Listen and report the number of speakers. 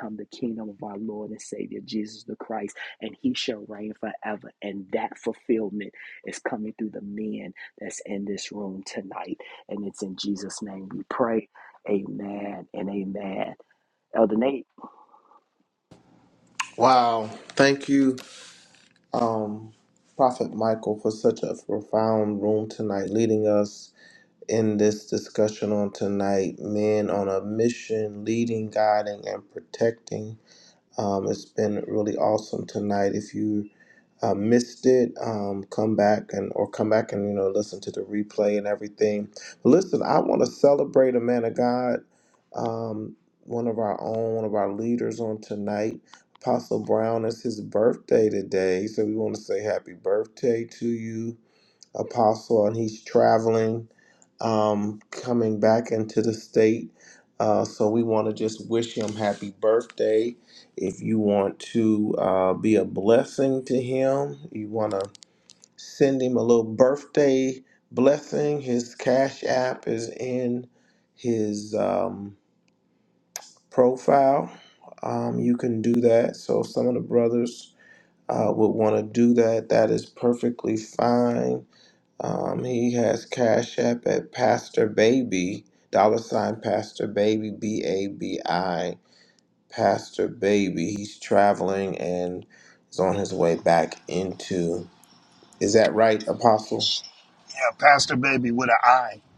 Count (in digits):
3